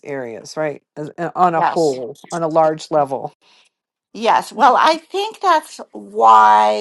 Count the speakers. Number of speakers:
2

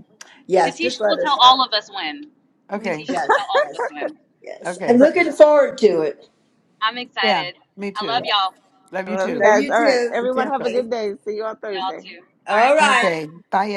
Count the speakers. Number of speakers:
4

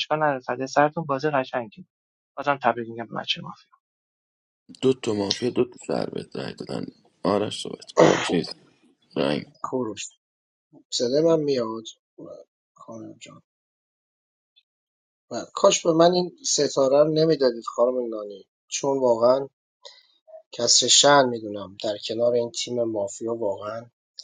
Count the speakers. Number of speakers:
3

